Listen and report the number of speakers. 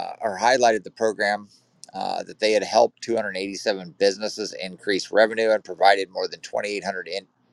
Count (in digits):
1